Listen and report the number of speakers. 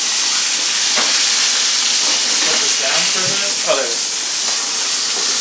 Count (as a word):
one